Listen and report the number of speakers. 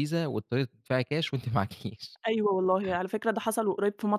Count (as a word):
two